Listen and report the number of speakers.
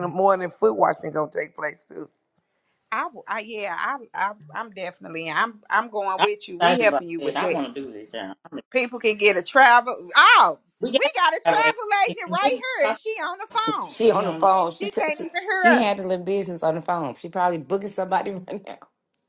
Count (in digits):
4